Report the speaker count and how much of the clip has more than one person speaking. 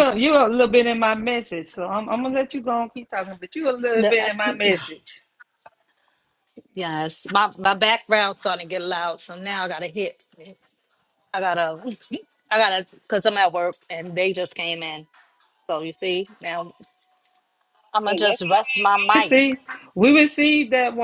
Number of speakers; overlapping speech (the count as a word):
two, about 6%